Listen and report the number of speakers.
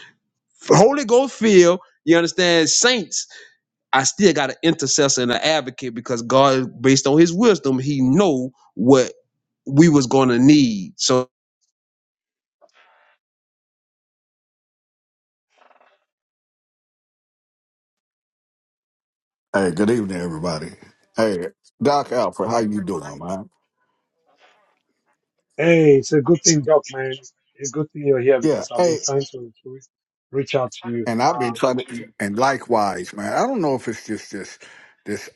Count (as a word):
three